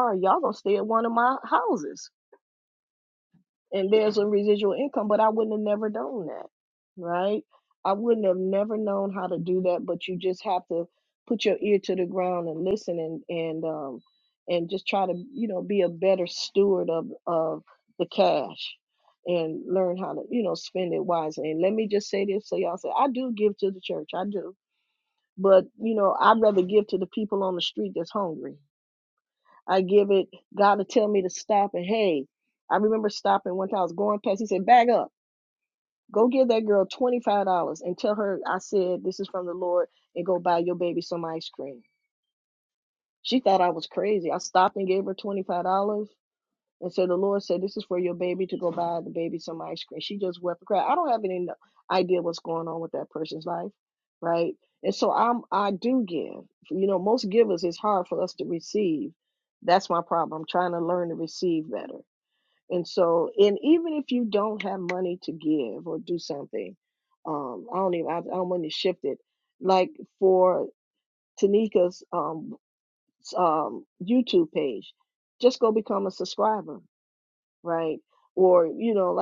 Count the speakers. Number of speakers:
1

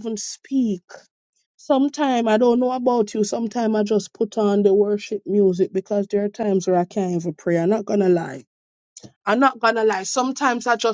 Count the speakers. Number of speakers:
1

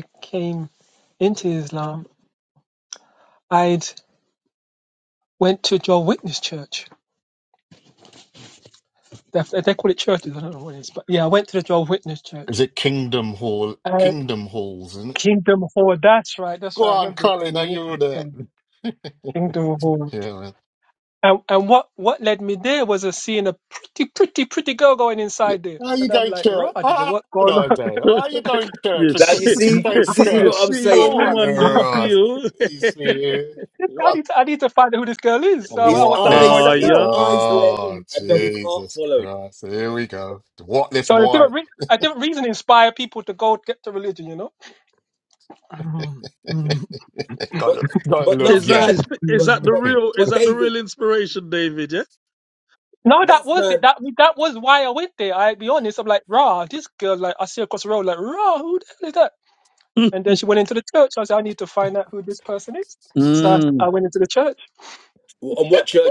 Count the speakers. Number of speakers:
4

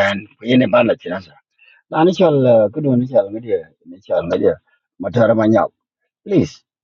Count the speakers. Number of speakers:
1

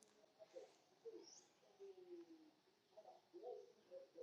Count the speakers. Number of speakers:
0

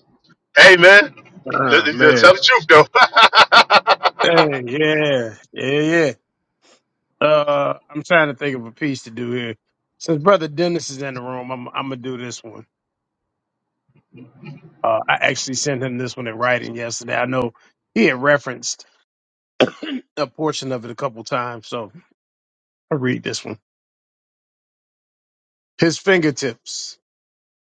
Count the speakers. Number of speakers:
2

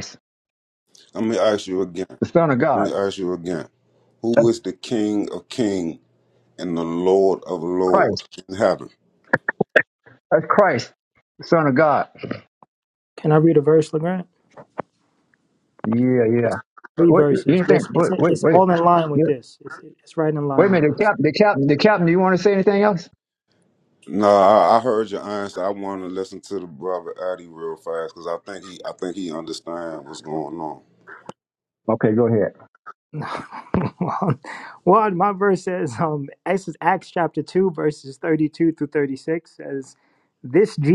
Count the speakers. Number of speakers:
3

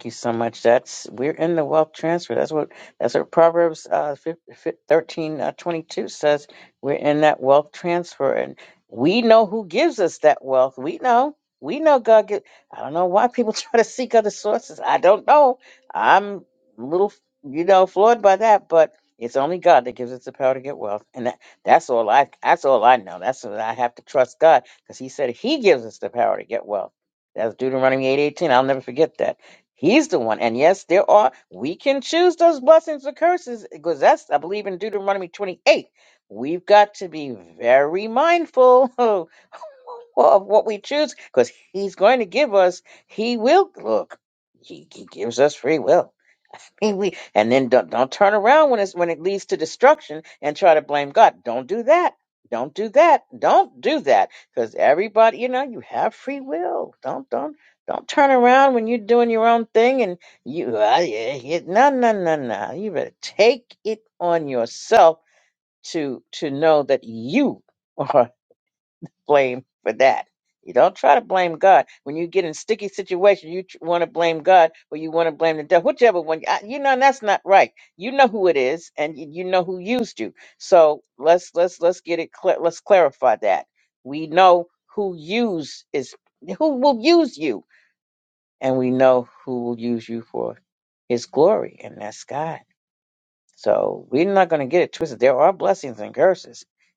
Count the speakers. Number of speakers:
1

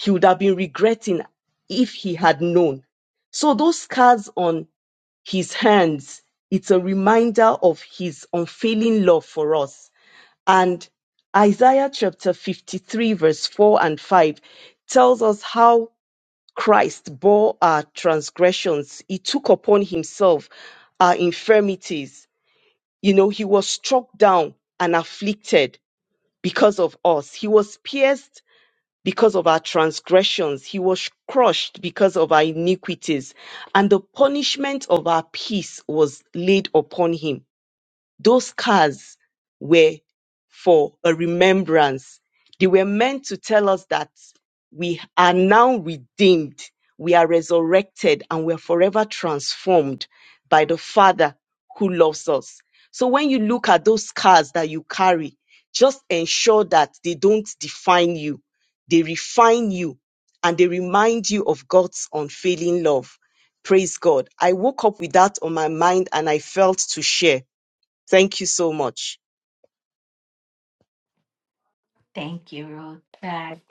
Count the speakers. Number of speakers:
2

